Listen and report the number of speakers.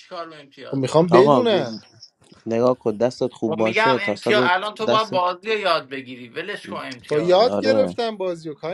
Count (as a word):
three